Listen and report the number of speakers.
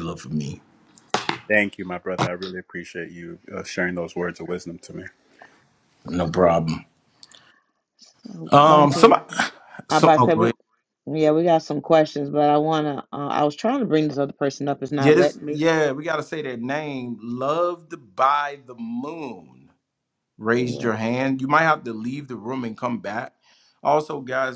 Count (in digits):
3